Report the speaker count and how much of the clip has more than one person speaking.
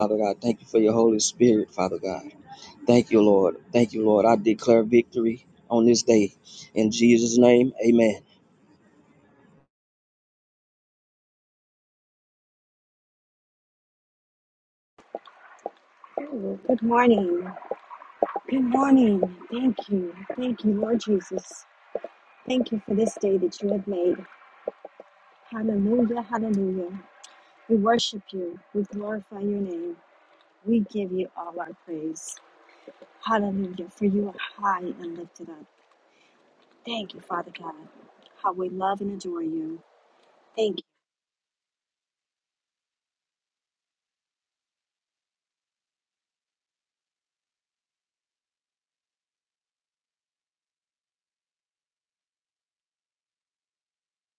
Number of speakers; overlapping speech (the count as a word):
two, no overlap